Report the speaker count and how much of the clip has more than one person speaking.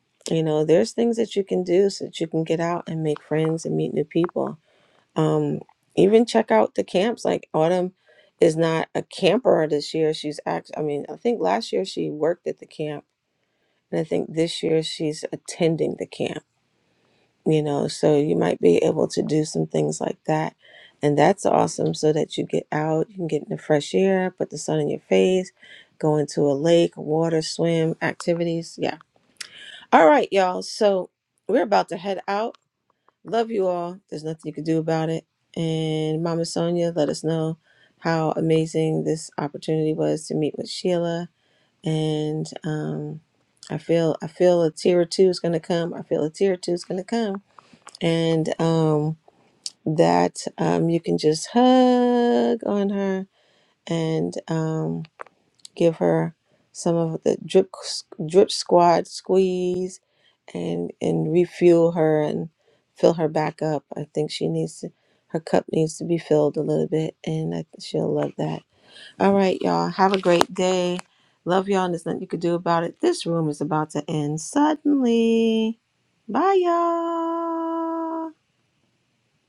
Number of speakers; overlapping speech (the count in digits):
1, no overlap